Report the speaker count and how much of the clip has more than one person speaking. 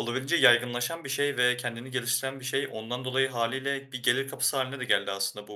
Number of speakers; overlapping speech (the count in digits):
1, no overlap